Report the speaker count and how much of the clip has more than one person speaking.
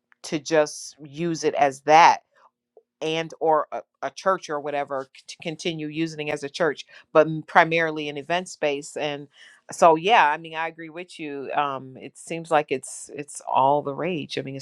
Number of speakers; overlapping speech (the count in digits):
1, no overlap